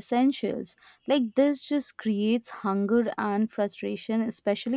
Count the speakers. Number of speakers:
one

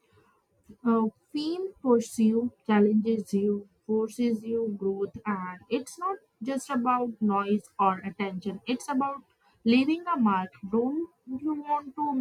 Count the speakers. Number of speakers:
one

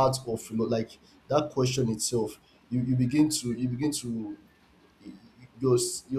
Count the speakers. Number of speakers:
one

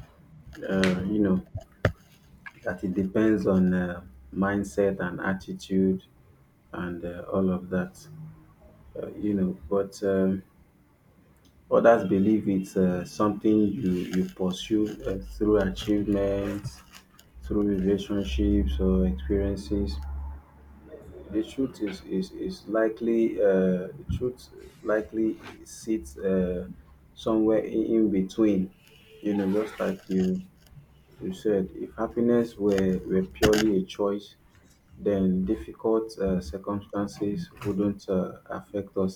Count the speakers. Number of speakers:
one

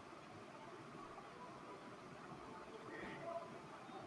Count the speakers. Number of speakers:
zero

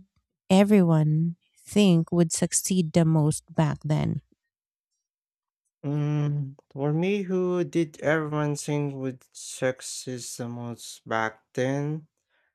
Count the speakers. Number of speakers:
two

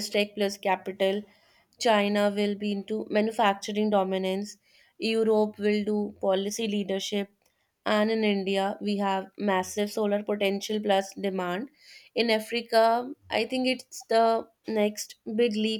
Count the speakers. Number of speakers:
one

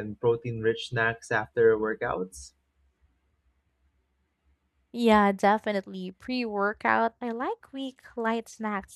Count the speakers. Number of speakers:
two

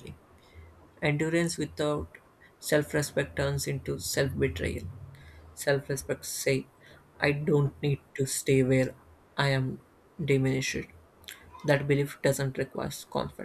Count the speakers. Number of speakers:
one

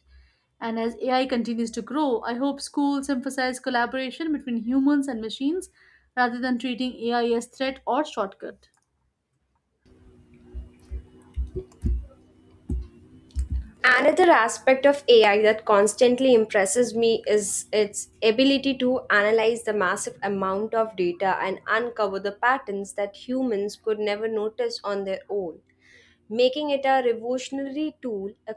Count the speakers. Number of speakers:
two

